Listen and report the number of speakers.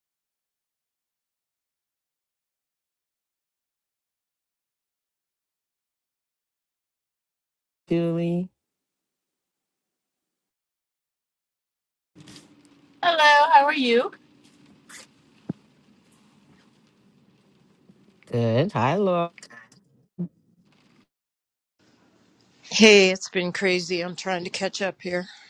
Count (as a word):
three